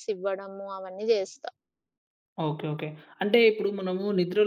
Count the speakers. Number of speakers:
2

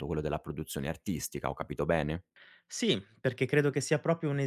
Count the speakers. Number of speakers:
2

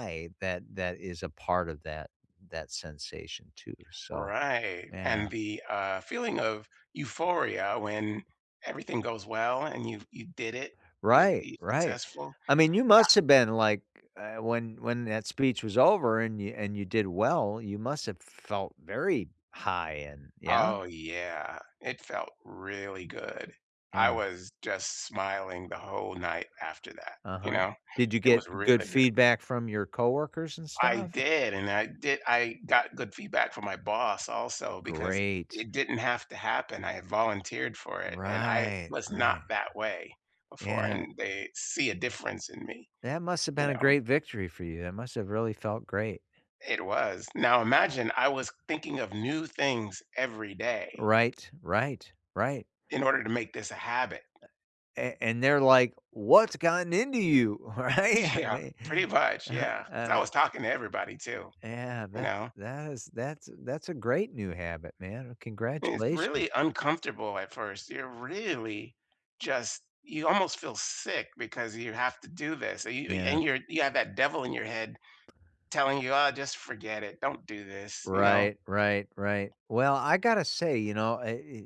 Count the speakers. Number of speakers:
2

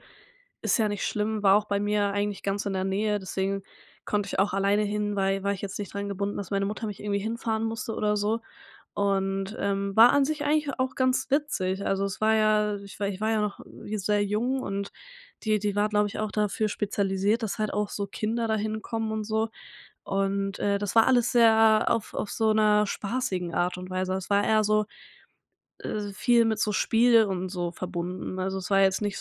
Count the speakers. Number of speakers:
1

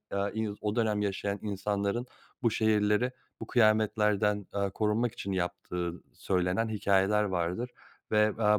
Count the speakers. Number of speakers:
1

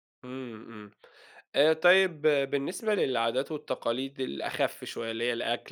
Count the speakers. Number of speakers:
1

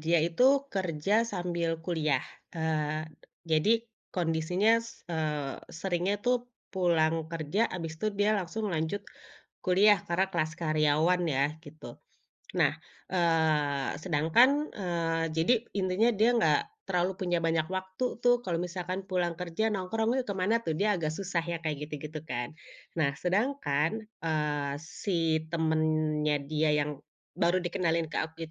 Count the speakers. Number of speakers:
1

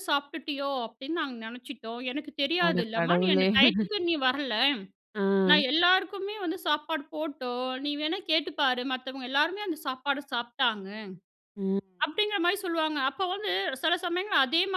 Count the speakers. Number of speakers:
2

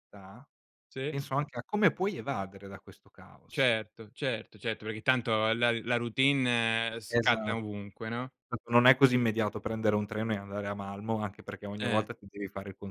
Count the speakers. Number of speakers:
2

